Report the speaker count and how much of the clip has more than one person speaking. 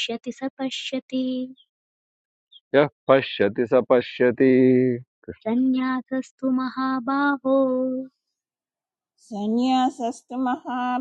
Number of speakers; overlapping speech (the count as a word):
three, no overlap